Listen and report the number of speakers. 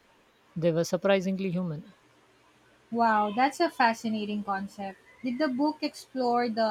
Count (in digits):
2